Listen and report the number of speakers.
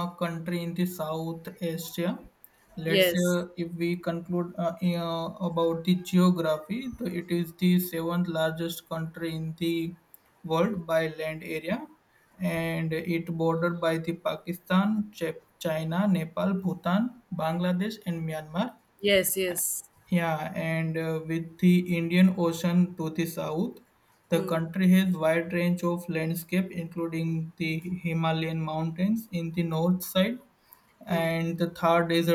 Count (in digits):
2